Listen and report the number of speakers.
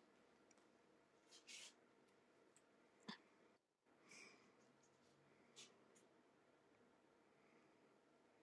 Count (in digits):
0